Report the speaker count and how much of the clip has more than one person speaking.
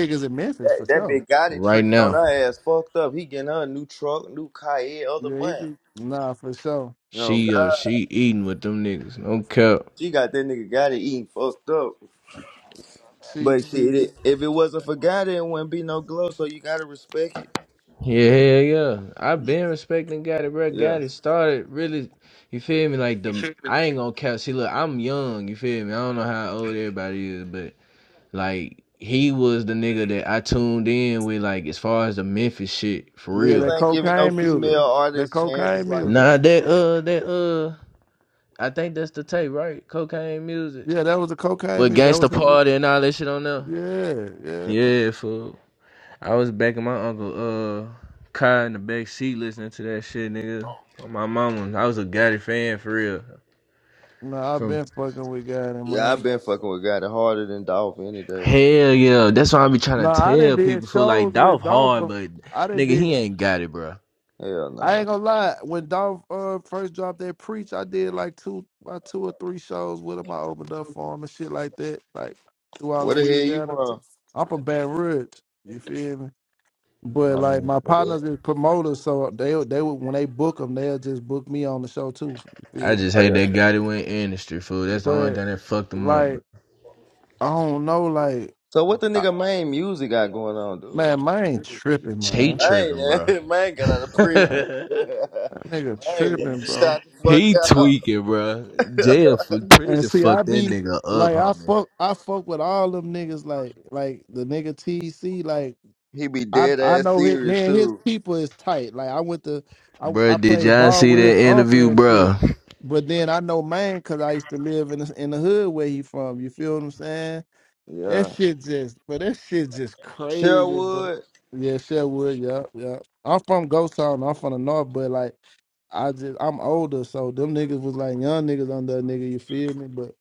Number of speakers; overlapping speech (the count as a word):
three, about 18%